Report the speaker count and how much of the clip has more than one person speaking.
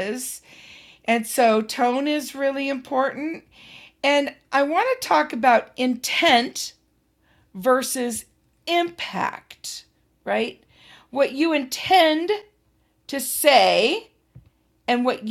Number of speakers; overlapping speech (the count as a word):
one, no overlap